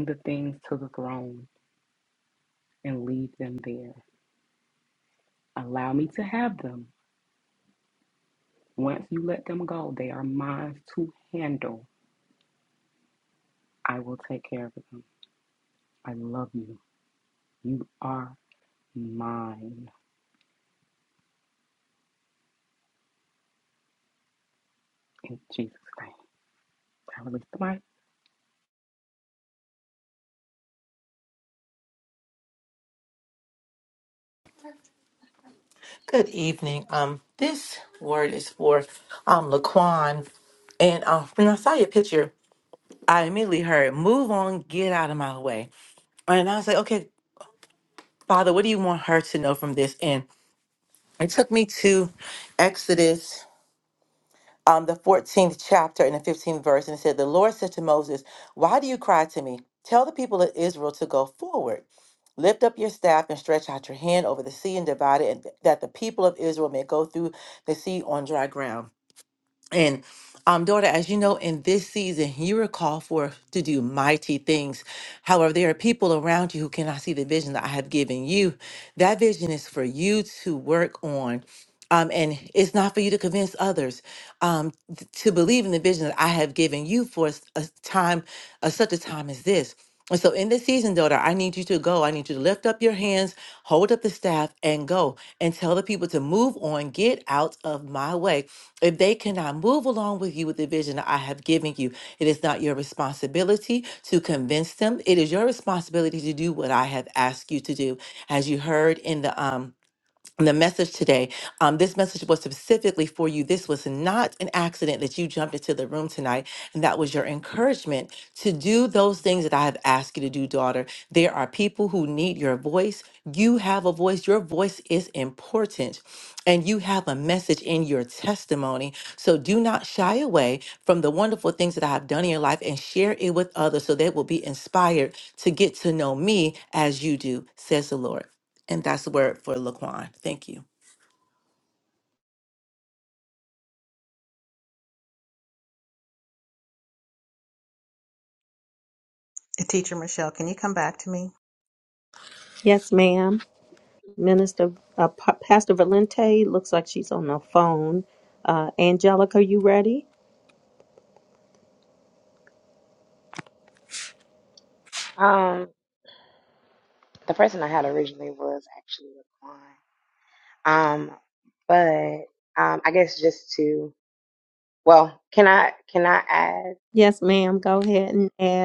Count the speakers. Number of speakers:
five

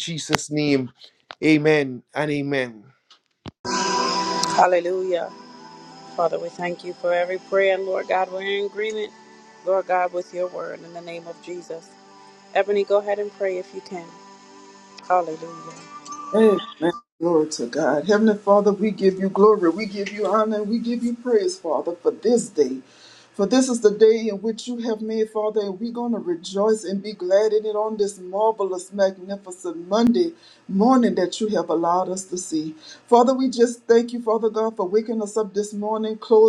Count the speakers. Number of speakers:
three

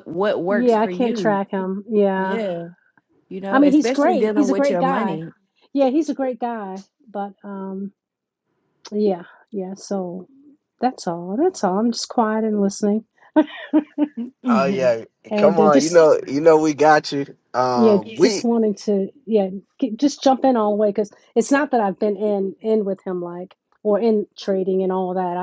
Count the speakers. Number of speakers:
three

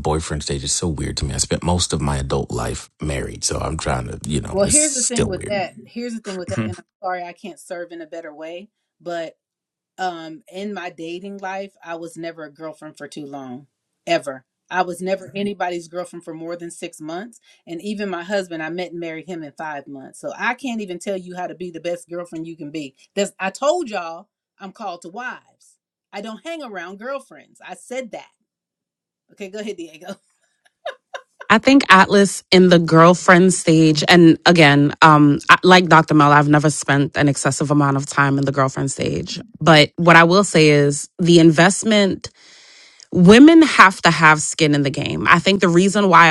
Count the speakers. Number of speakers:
three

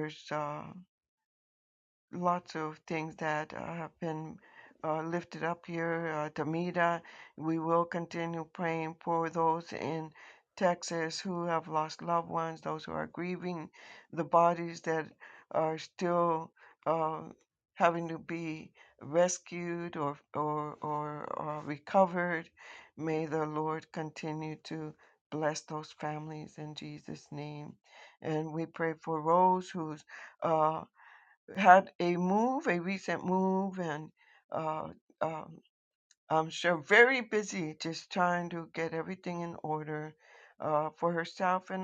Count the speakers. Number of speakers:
one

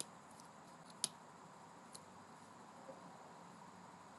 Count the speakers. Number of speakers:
zero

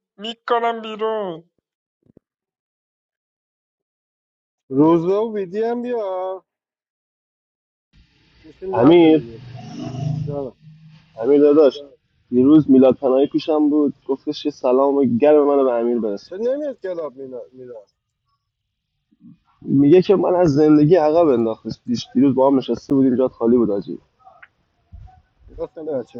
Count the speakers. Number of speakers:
three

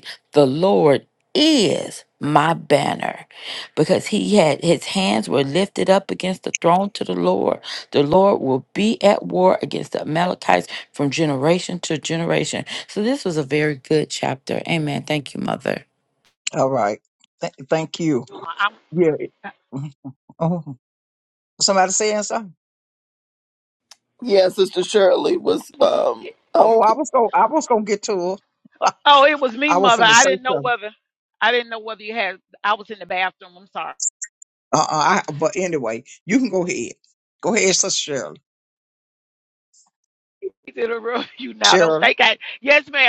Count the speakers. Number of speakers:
four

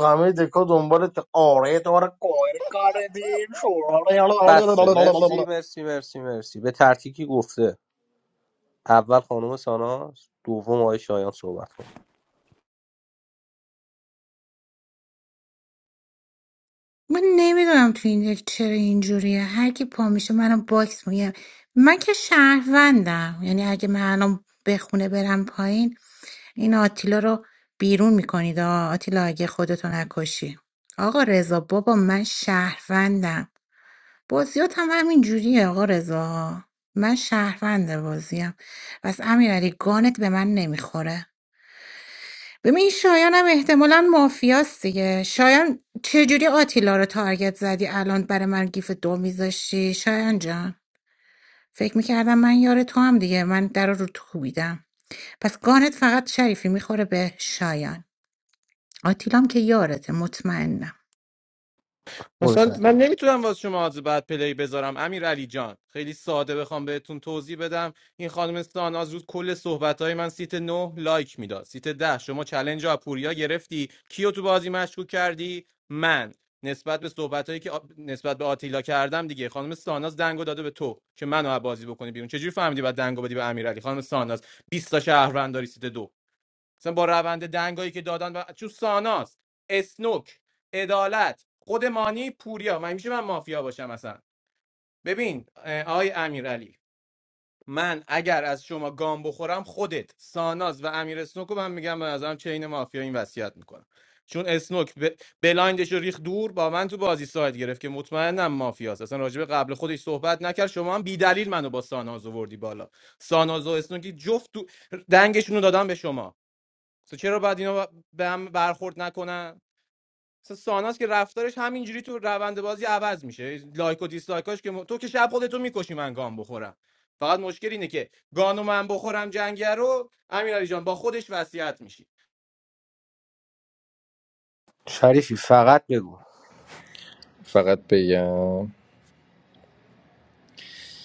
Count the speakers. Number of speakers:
five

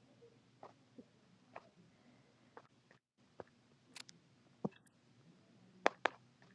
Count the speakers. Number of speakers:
zero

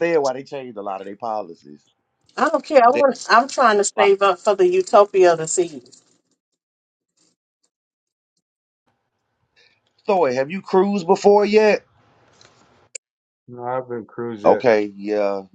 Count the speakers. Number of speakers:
three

